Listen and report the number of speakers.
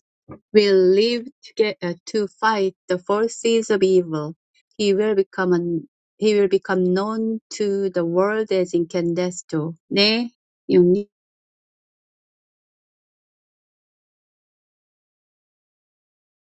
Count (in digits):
1